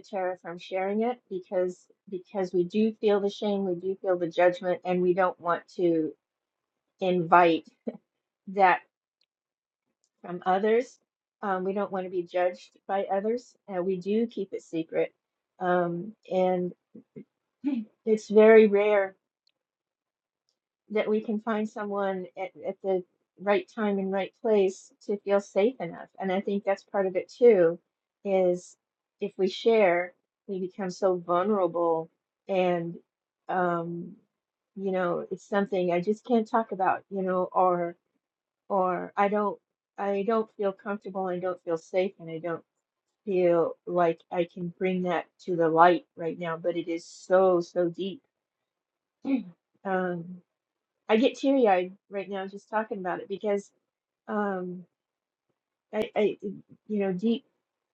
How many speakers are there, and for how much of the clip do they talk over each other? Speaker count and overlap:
one, no overlap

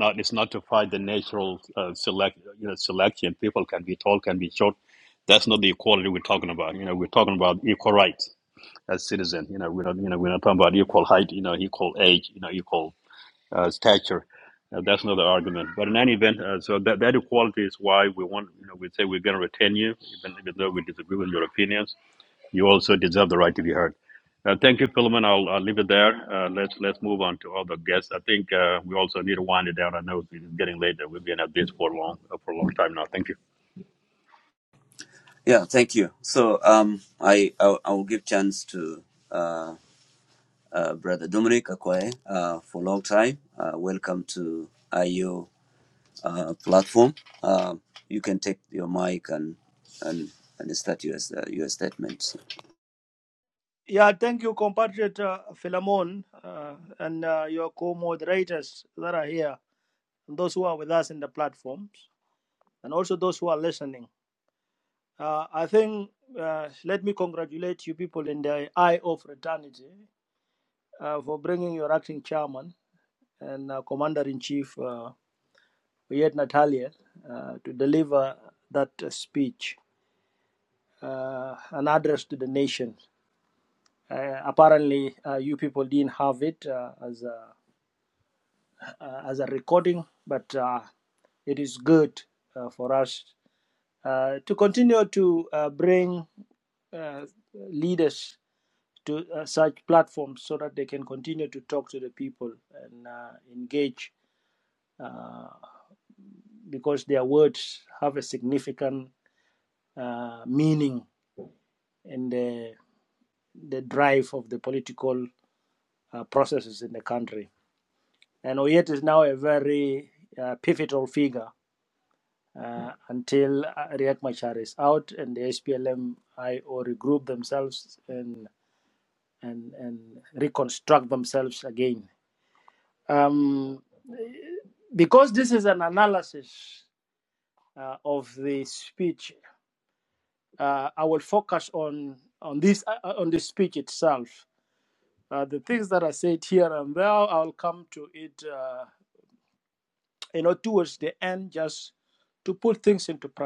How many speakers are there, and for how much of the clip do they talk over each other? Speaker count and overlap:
three, no overlap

